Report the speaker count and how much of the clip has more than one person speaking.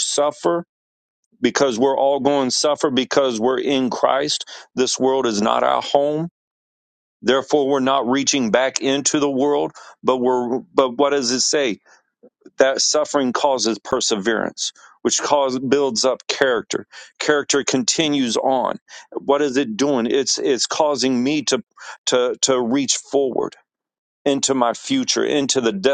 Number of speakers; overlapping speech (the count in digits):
1, no overlap